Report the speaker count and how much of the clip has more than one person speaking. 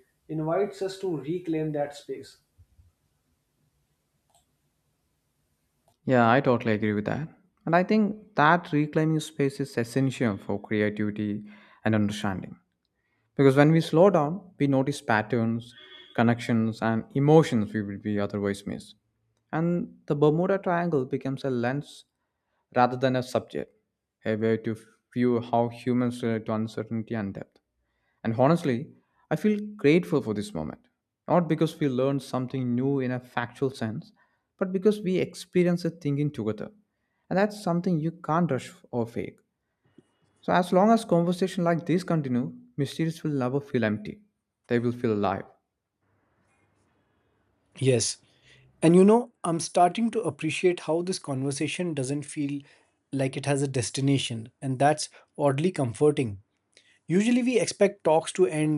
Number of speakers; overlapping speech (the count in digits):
3, no overlap